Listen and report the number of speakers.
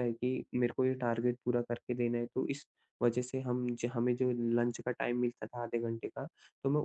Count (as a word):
one